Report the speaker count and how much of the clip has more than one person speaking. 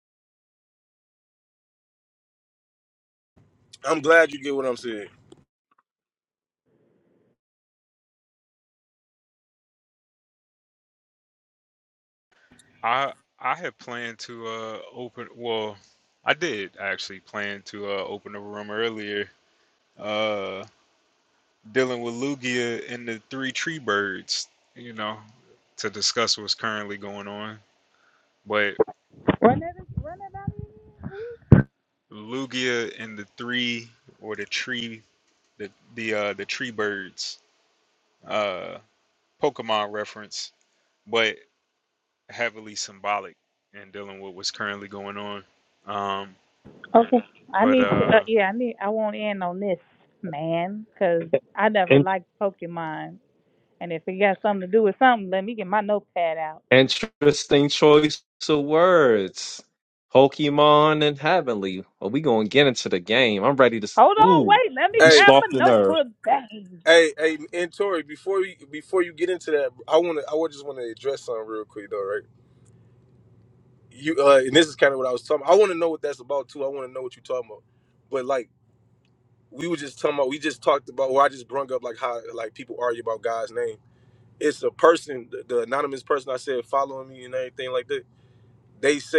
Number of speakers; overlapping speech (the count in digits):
4, about 3%